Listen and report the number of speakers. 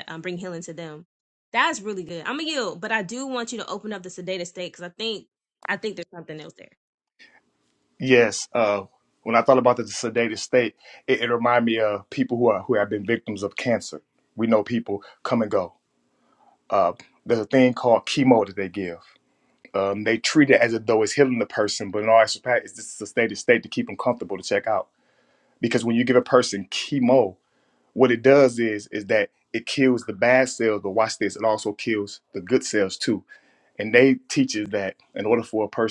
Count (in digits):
2